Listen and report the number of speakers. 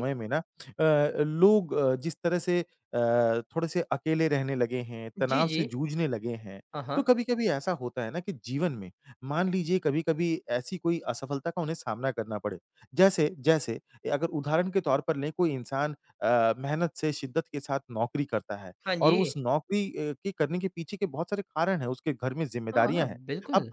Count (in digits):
2